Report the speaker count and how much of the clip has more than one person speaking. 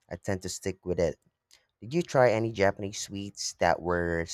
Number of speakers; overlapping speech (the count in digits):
1, no overlap